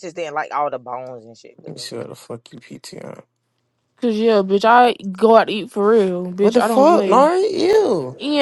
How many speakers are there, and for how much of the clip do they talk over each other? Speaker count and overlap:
three, about 12%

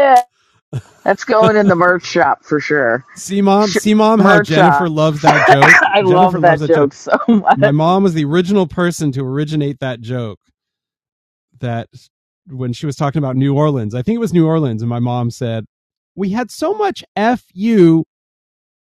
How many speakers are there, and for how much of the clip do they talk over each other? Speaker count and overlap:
two, about 12%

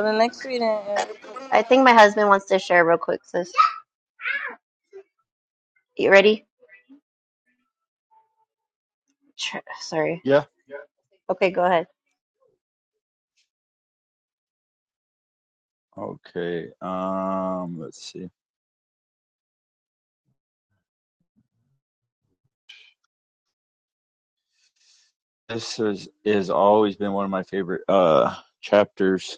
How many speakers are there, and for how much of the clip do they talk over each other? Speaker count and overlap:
three, no overlap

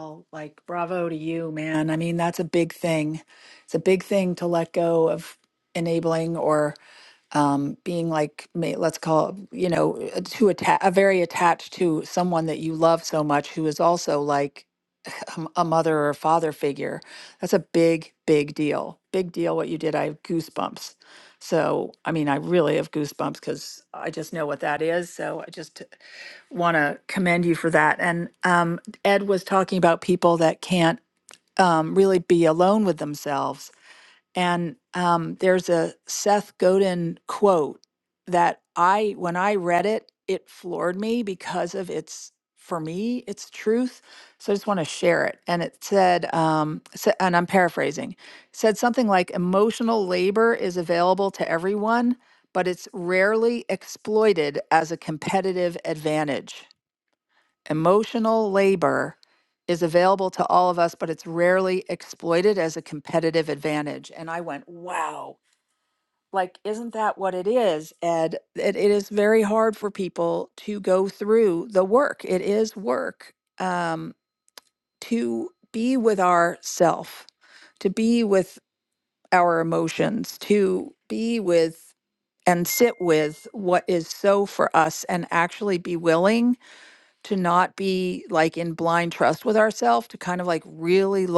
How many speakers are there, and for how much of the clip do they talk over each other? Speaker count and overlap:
one, no overlap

